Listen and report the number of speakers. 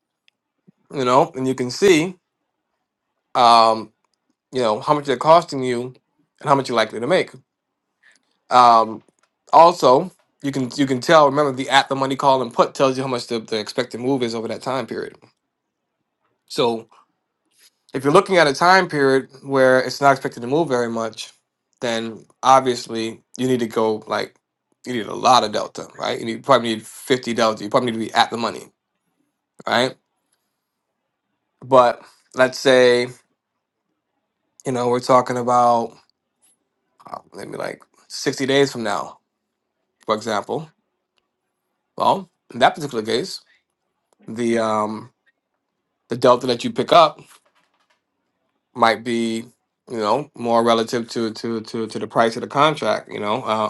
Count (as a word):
one